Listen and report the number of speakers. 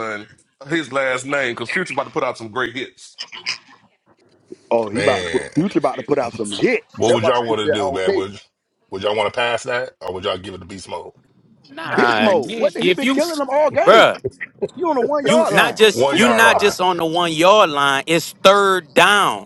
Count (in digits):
4